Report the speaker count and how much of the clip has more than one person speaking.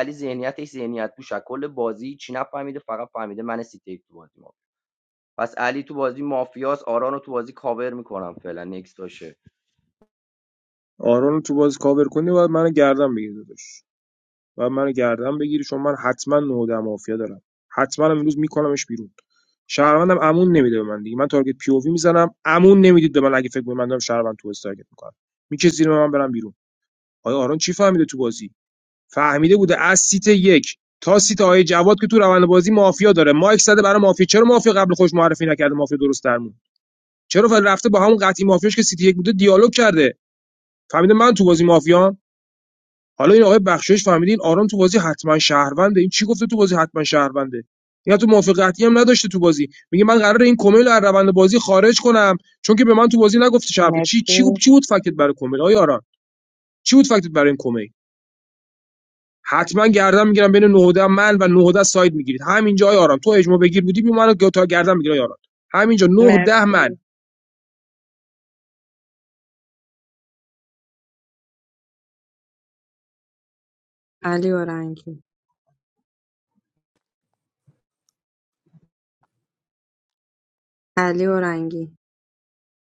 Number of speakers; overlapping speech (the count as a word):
three, about 2%